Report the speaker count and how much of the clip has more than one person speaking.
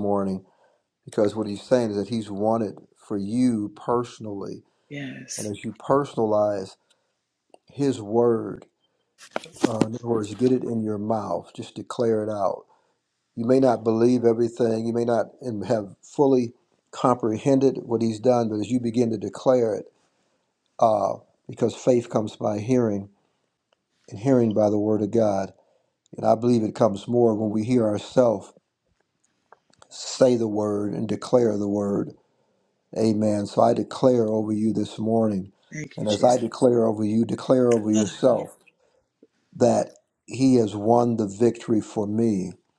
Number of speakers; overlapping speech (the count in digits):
2, about 2%